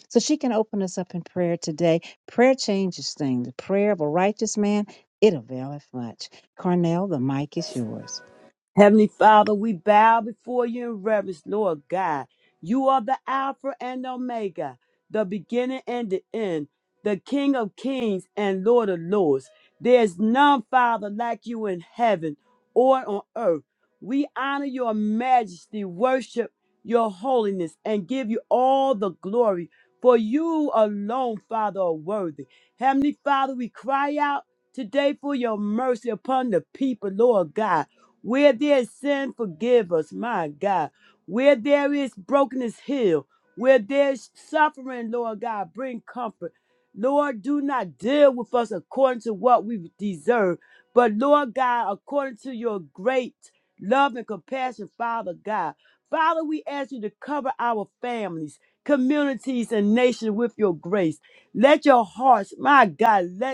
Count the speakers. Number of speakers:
2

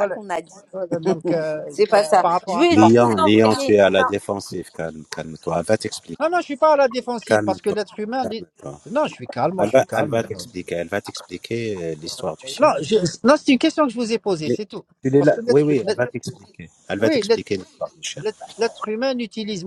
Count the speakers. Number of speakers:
3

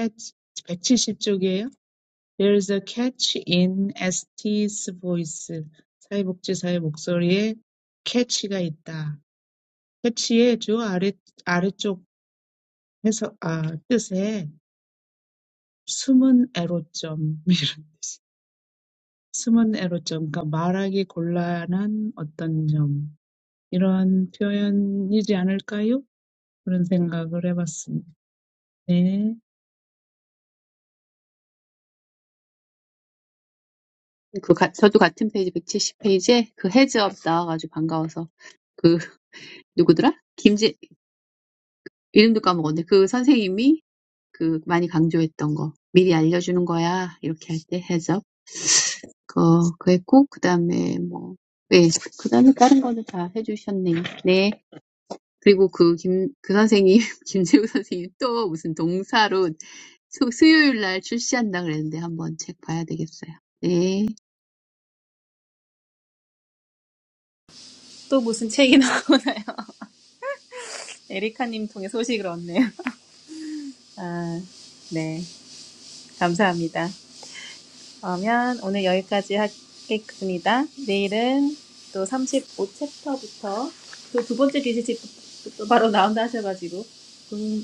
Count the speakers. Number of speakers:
3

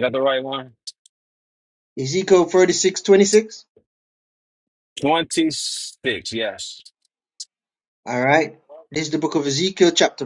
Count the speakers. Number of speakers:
2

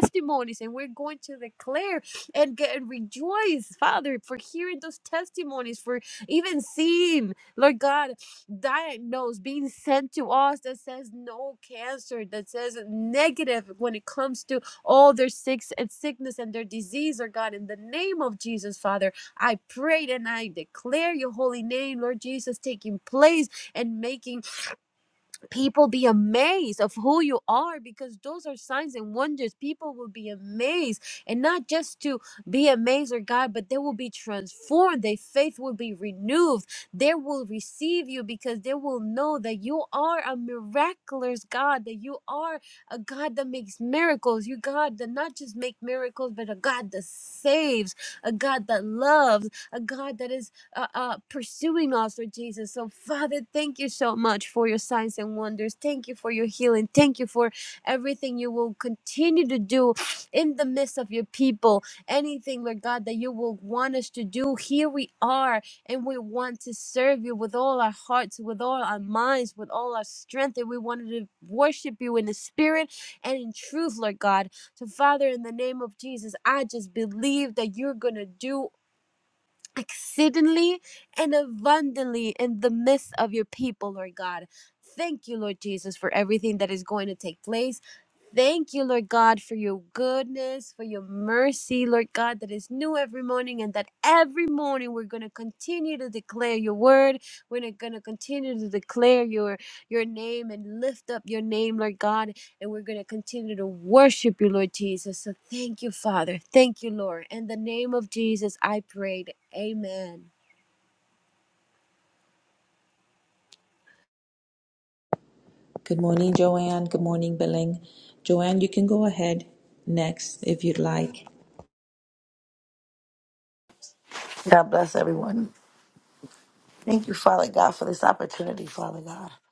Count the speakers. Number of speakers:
3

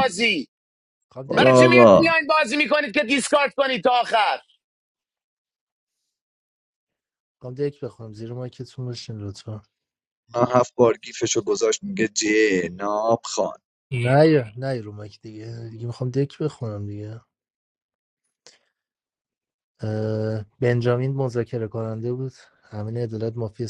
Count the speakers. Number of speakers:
3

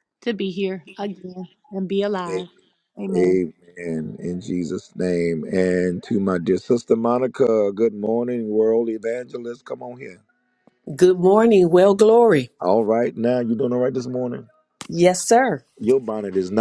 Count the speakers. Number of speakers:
3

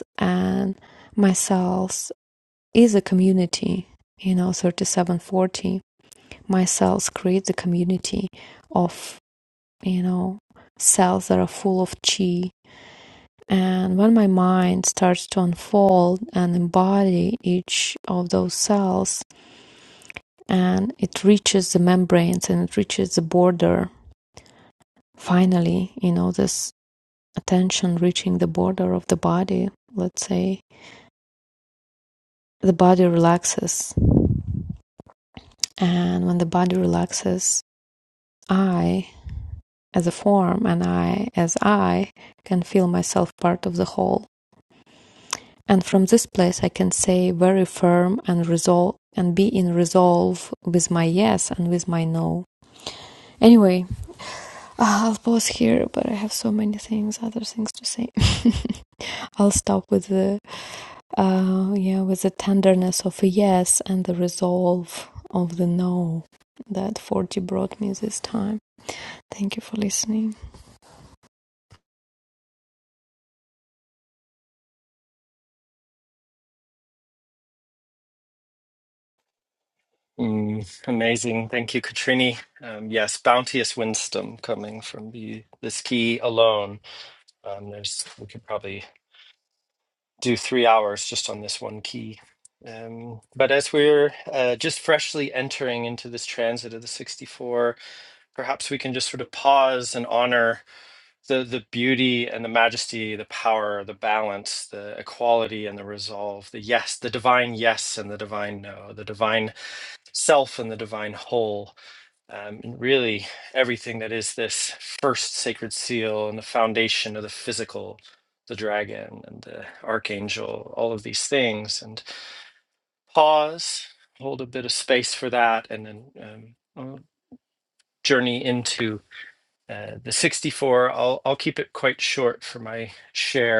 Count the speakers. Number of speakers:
2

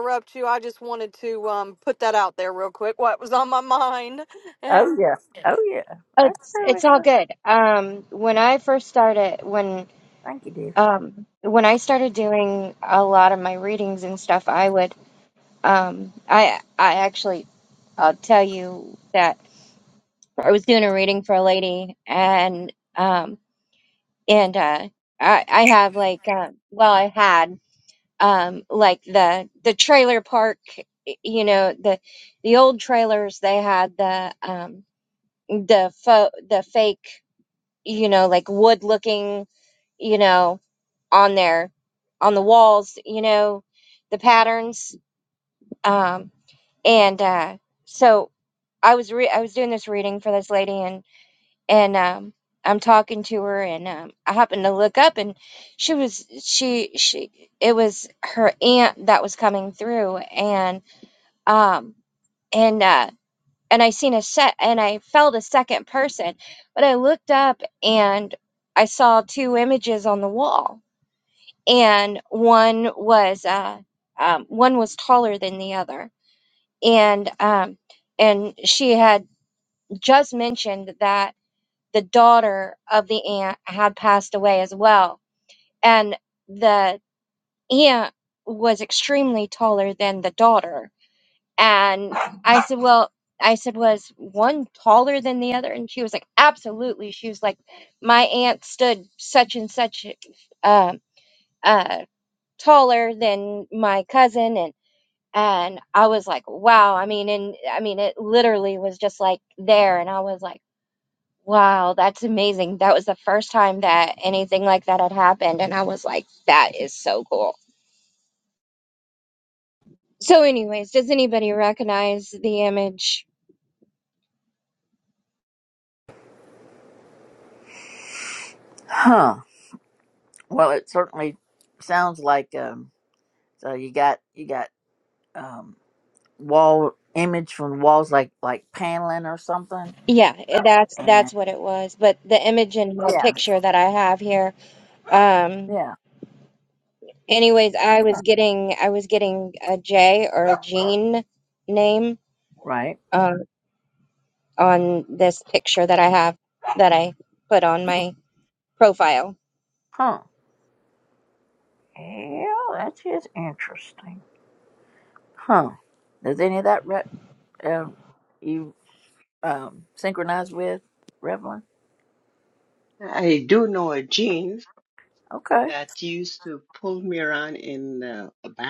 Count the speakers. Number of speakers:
4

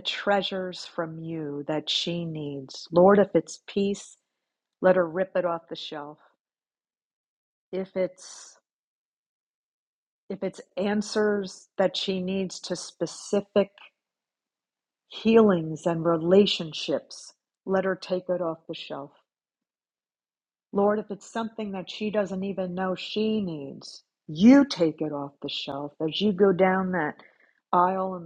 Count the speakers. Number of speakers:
1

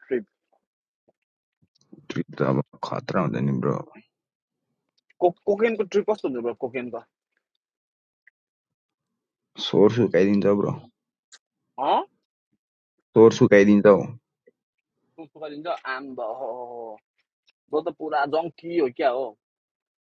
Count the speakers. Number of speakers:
2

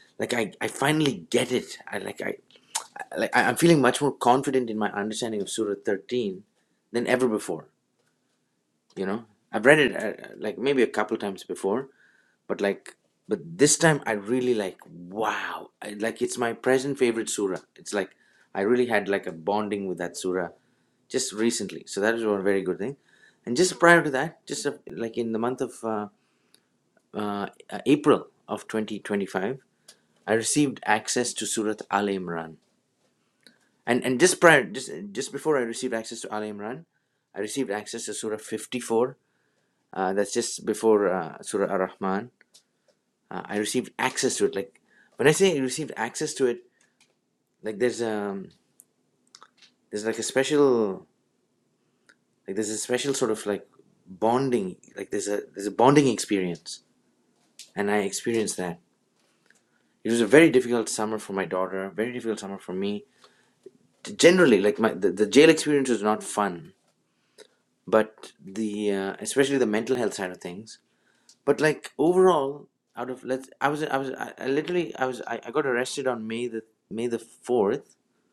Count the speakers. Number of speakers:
1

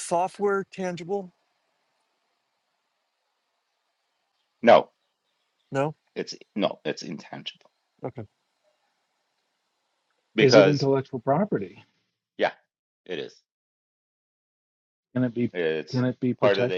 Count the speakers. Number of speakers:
3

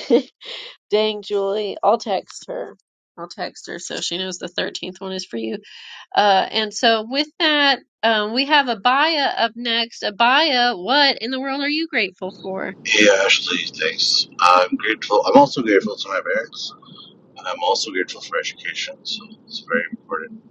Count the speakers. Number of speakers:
2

